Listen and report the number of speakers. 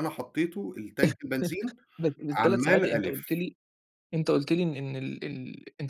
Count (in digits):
2